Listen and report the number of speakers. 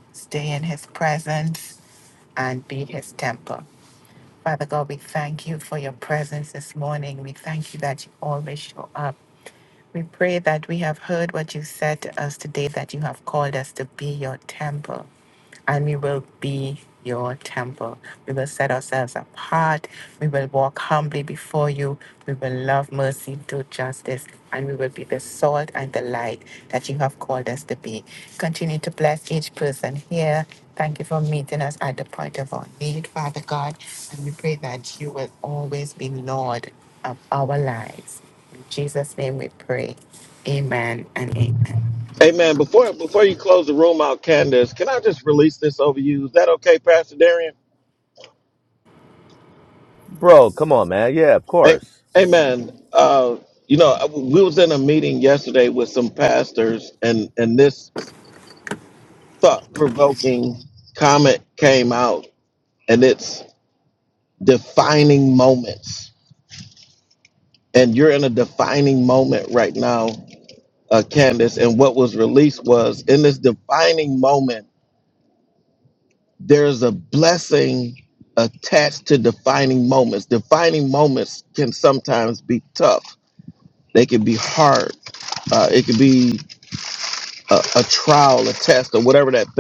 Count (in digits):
3